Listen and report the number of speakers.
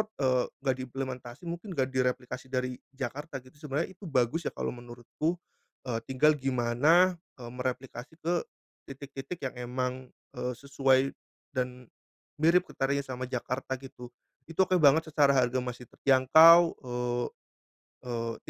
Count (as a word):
one